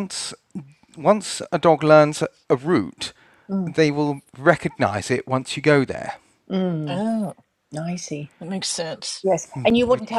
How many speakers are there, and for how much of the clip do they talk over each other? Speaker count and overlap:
three, about 2%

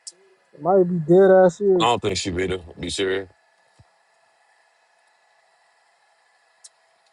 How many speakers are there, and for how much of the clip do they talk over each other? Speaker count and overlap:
two, about 1%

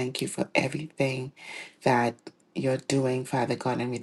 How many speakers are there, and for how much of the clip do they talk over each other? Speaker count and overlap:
one, no overlap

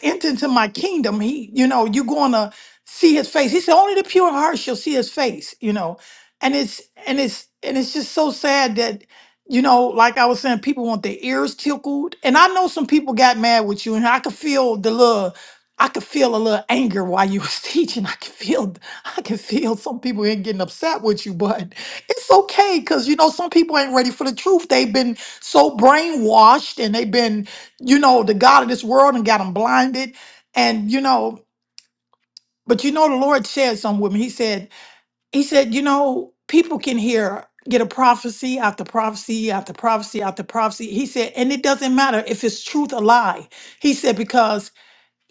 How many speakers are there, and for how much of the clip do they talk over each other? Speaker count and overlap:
one, no overlap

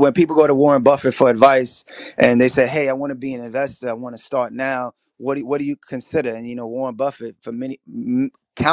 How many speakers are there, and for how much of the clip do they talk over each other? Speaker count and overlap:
one, no overlap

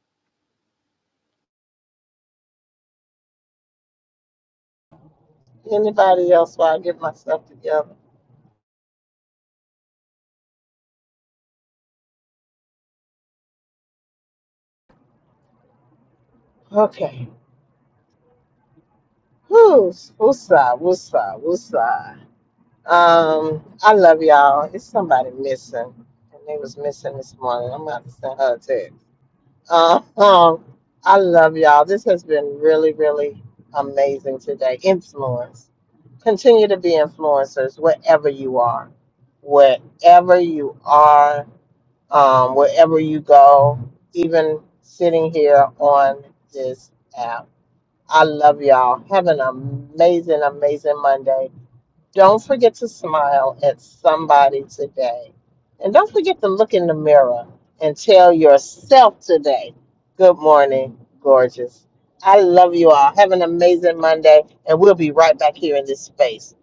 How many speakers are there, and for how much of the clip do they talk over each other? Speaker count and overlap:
one, no overlap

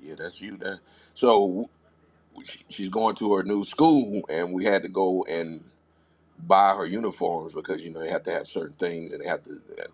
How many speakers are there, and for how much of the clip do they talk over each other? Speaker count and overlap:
one, no overlap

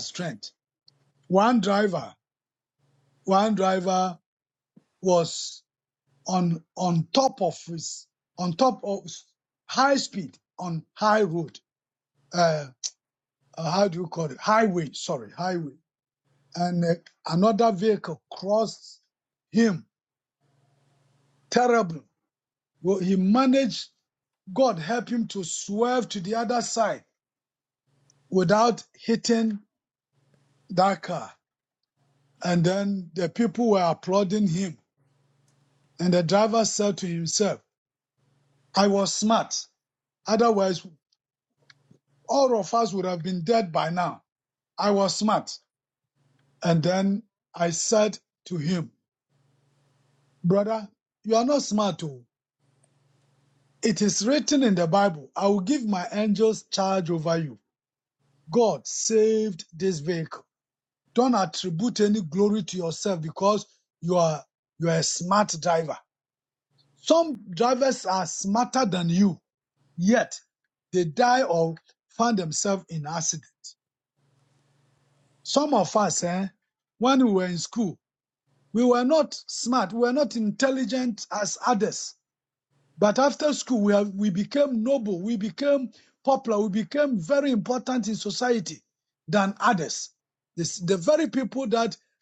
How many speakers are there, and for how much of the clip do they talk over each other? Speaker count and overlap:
one, no overlap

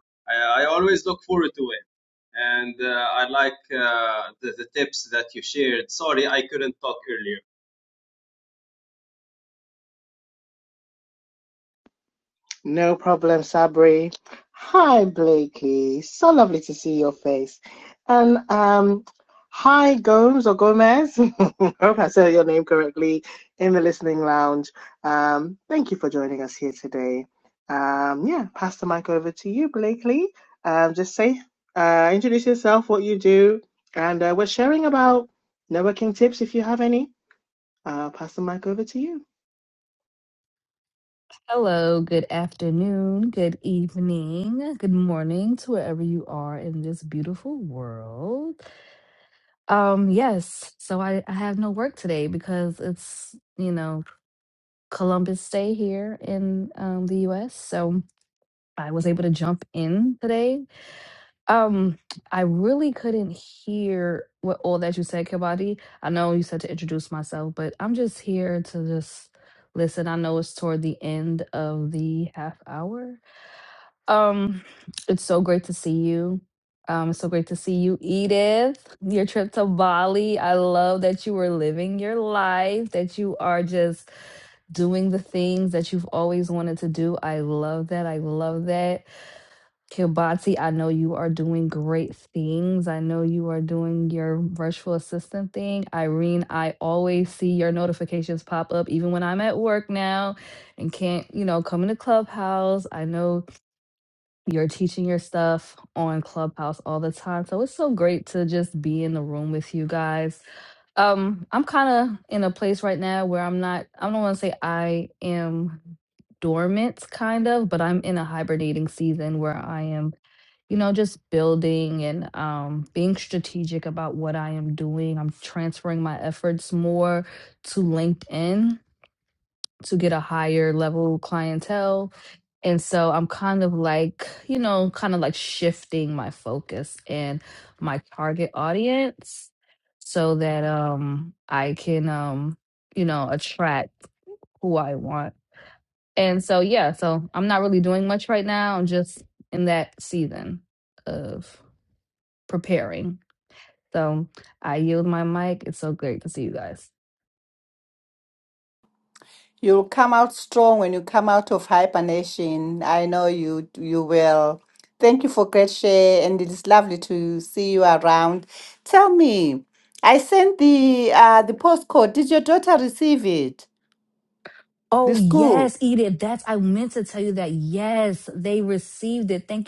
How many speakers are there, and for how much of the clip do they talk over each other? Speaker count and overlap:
four, under 1%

